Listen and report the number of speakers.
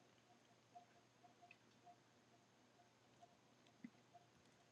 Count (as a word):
zero